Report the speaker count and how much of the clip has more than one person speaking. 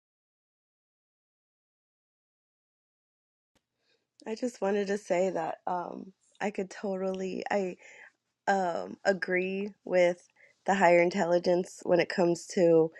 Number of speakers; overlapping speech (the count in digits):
1, no overlap